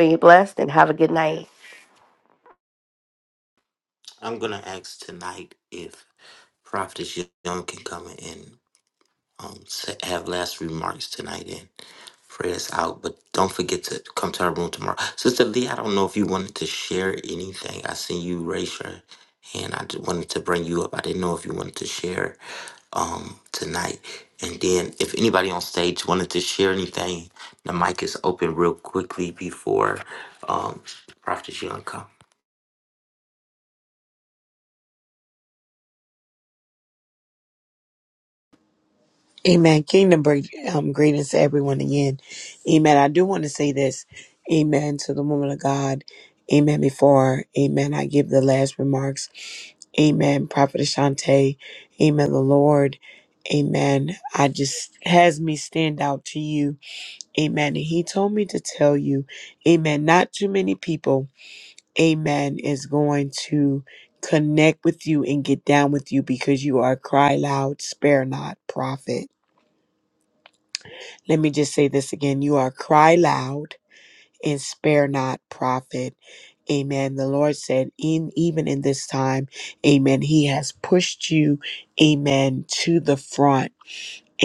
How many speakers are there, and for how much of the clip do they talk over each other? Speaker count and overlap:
three, no overlap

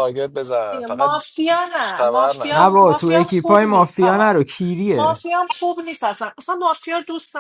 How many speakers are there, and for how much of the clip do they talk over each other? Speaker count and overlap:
three, about 40%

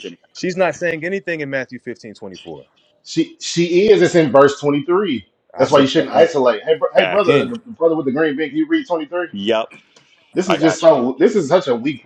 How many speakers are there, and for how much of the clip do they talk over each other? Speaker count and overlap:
three, about 14%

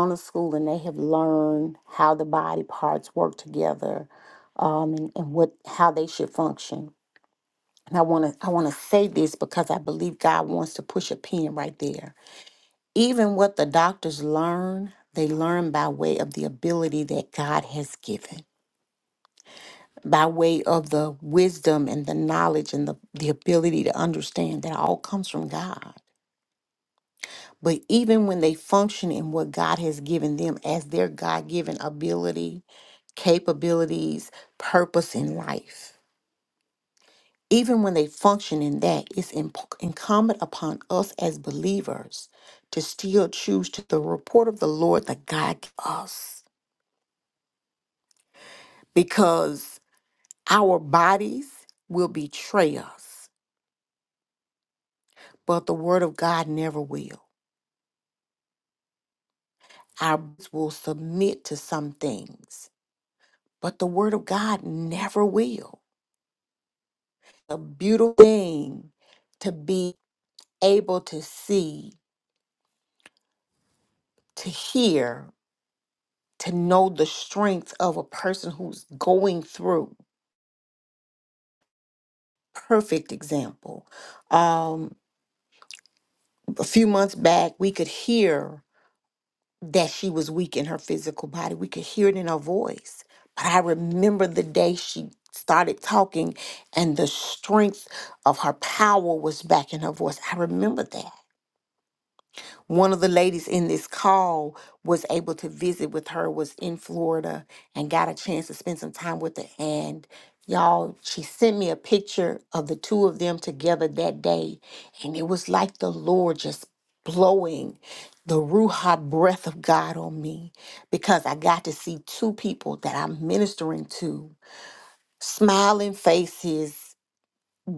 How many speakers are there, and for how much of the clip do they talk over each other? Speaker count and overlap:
one, no overlap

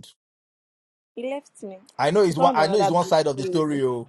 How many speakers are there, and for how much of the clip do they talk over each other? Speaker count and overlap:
two, about 38%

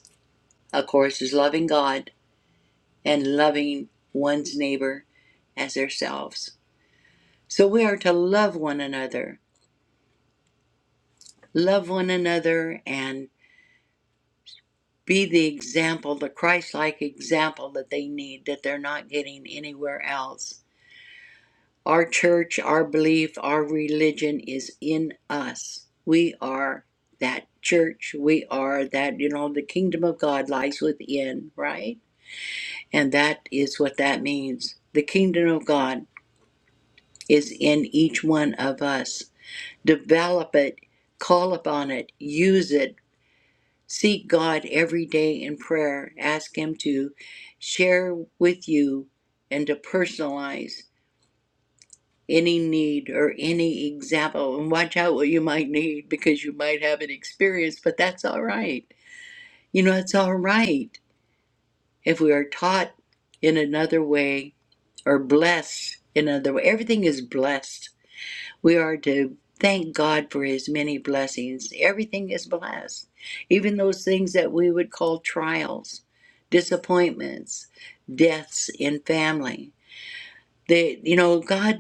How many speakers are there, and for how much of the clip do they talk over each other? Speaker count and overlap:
one, no overlap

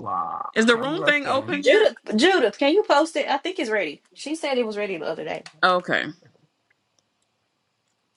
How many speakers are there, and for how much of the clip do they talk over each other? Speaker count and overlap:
three, about 16%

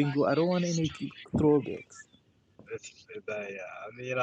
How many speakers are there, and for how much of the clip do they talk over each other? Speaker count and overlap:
two, no overlap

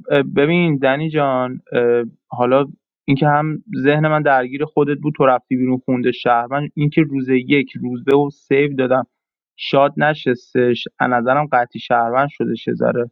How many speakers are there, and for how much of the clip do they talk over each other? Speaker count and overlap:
one, no overlap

